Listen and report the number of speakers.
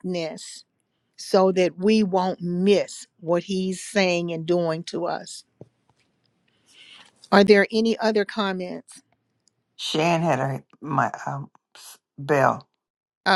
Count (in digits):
2